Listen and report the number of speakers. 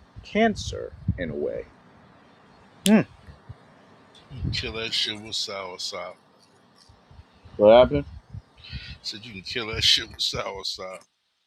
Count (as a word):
two